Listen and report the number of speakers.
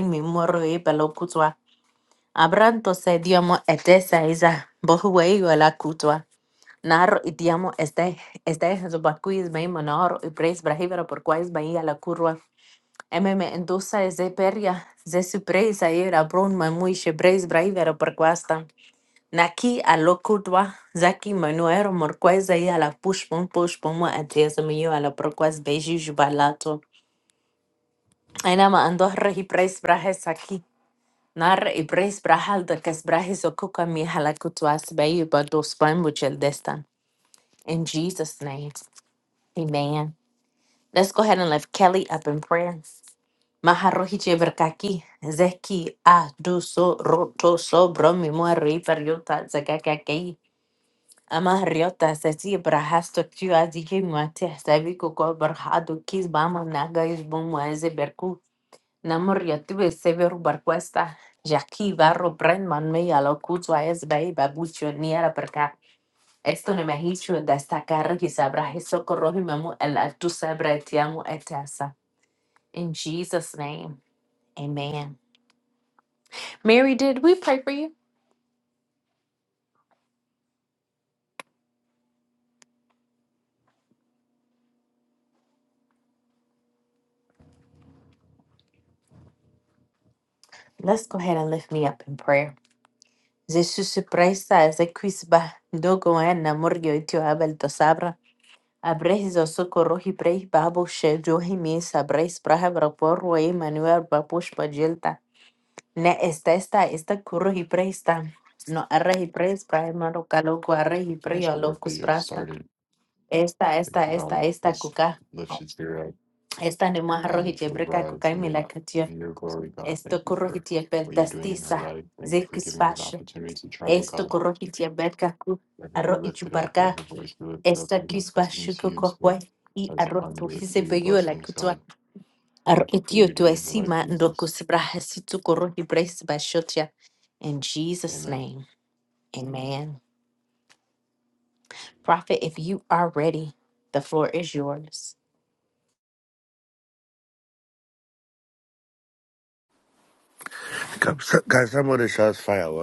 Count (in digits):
3